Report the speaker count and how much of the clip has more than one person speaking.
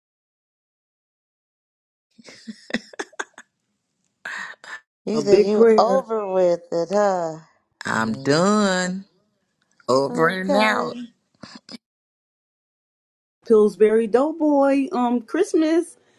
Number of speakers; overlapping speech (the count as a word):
three, about 13%